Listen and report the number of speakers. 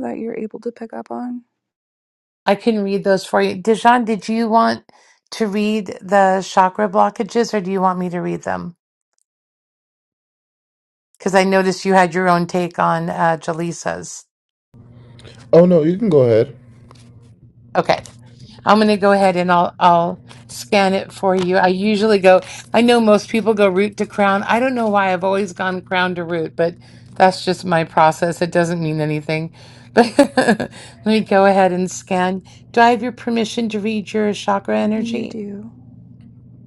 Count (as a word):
three